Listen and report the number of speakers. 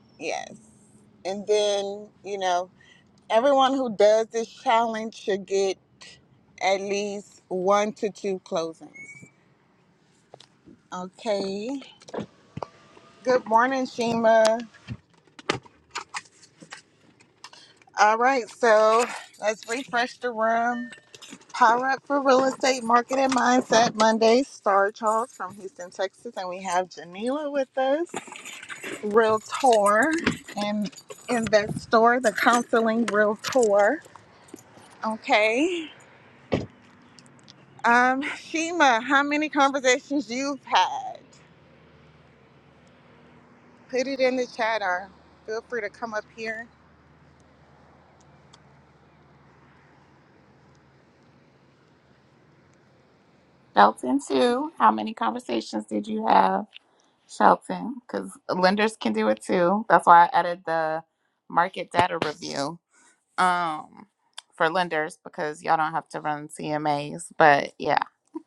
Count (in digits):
2